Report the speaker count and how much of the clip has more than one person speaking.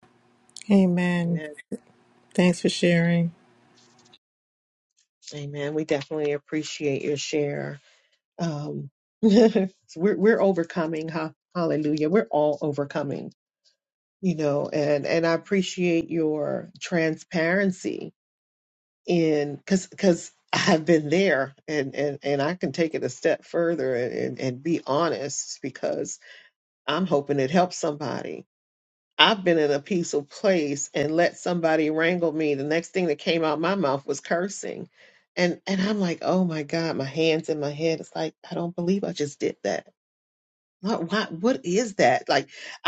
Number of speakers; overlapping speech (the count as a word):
two, under 1%